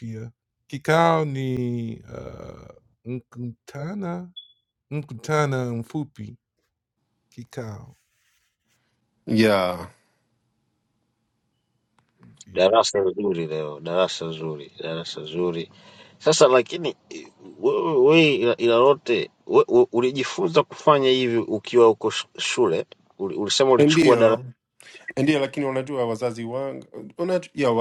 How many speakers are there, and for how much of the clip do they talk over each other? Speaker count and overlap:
three, about 2%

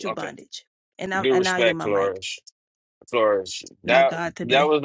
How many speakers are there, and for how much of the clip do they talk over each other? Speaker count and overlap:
two, about 43%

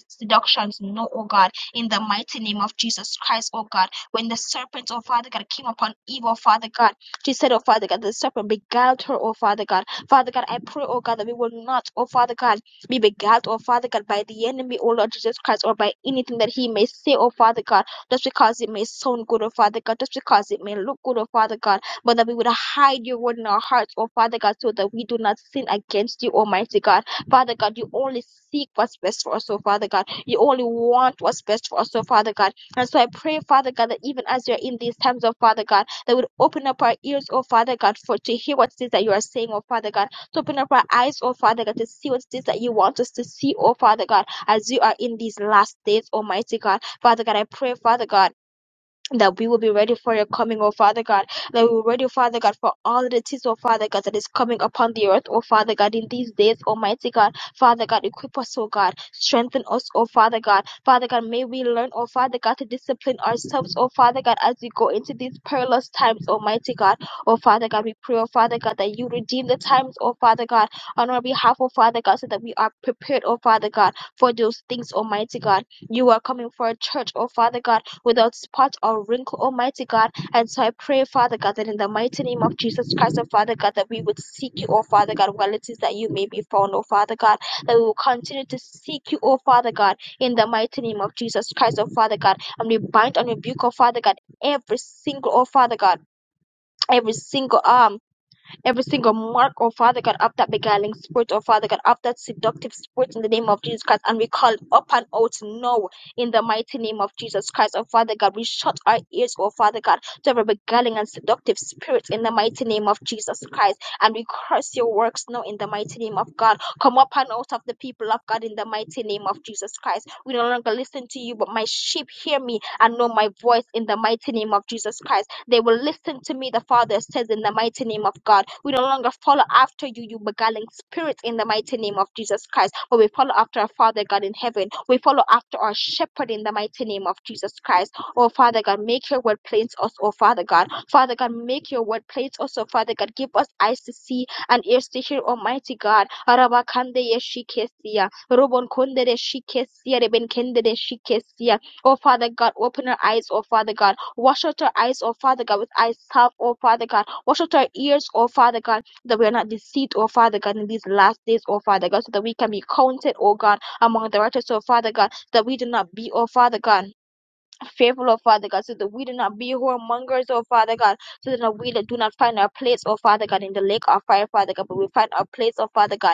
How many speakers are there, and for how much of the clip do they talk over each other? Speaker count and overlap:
one, no overlap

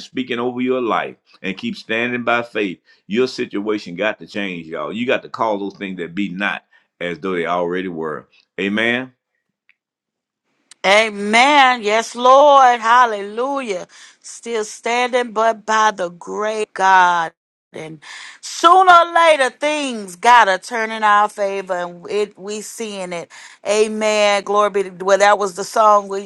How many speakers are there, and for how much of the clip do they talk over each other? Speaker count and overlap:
two, no overlap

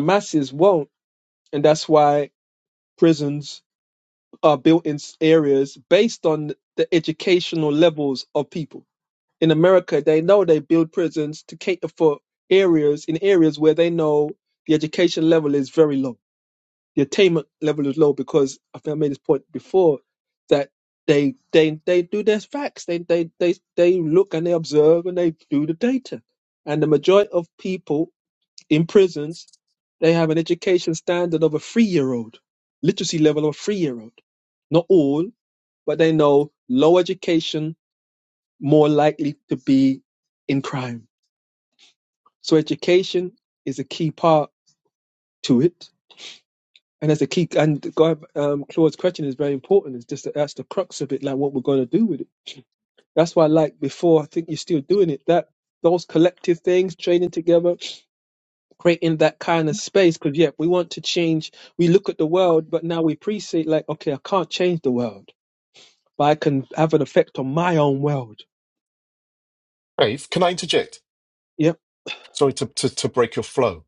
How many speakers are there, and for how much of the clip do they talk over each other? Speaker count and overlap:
two, no overlap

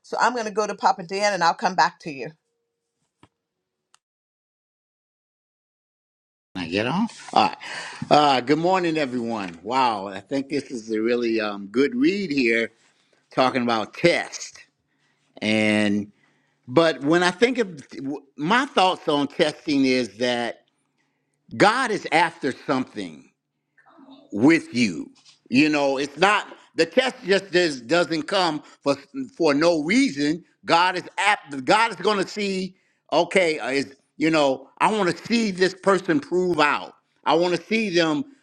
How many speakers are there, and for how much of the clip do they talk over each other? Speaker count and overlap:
two, no overlap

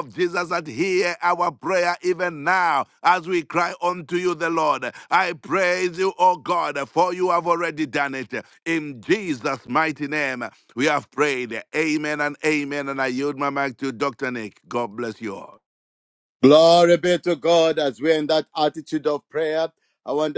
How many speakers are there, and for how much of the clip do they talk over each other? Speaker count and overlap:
two, no overlap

